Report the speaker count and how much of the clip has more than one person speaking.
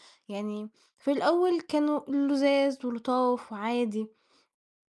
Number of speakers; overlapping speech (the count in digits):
1, no overlap